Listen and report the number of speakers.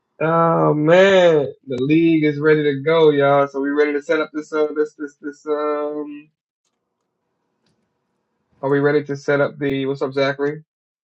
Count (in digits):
1